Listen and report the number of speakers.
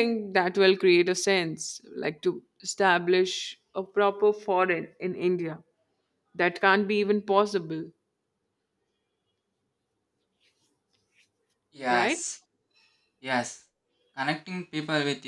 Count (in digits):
2